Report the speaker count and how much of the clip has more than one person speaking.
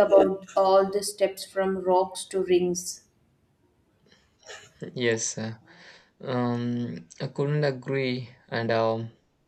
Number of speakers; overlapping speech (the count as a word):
two, no overlap